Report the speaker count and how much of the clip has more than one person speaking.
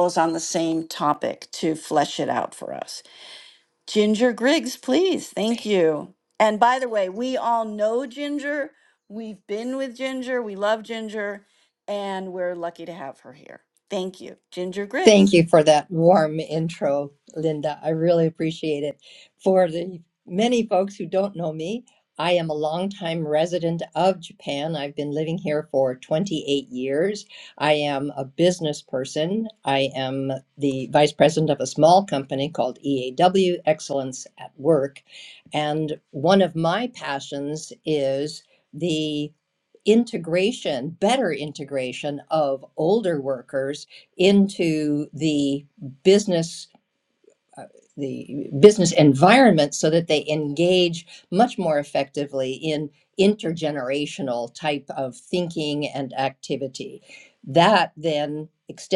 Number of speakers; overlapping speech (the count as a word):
two, under 1%